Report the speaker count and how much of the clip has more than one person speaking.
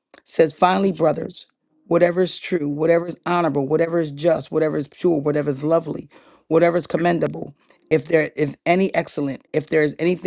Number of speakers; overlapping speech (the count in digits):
1, no overlap